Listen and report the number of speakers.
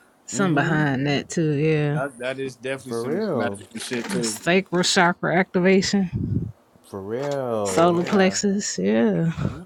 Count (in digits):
3